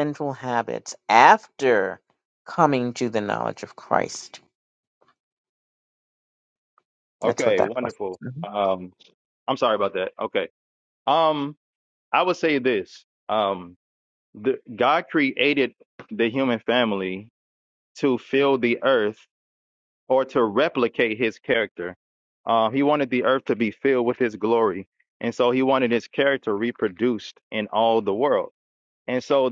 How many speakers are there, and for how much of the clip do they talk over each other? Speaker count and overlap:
two, about 3%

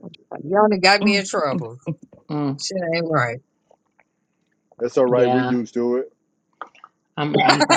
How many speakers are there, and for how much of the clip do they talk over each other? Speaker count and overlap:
three, about 6%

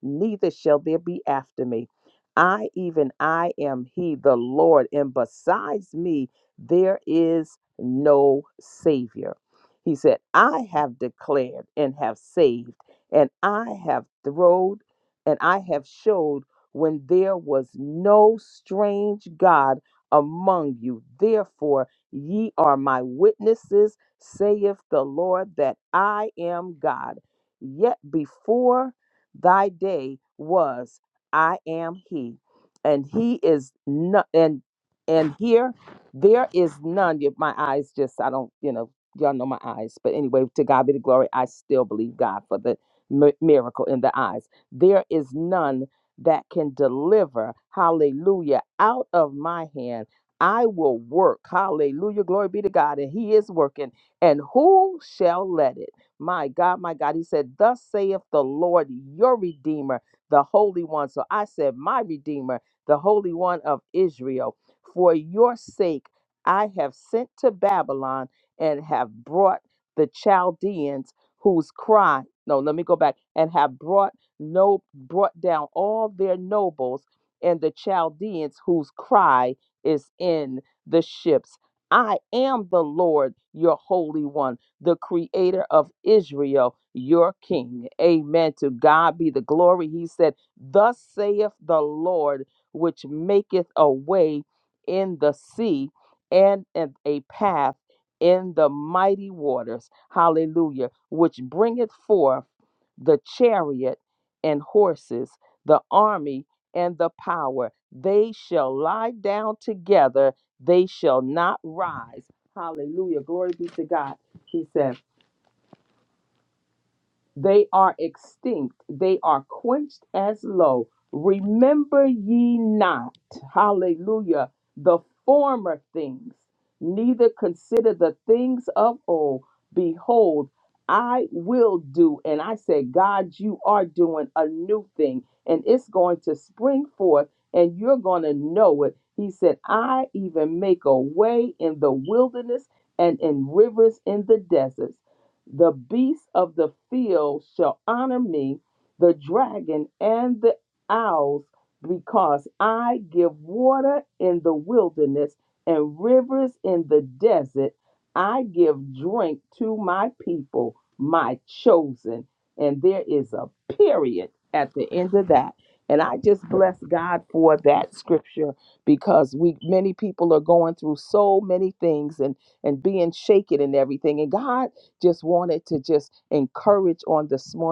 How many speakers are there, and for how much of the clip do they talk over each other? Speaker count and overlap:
one, no overlap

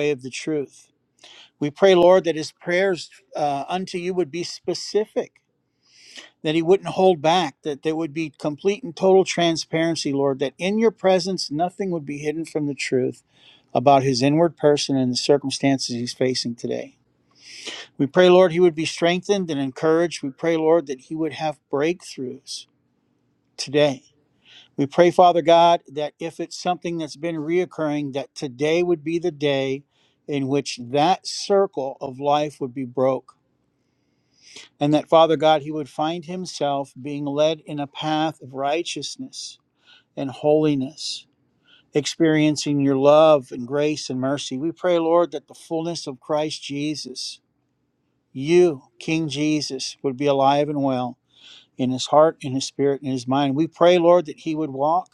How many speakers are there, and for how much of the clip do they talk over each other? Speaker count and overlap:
one, no overlap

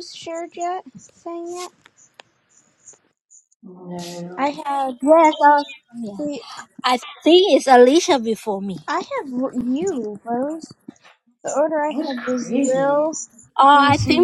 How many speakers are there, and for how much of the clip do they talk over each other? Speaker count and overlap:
three, about 14%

